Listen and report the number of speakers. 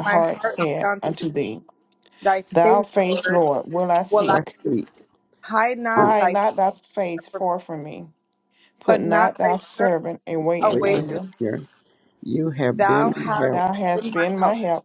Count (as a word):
three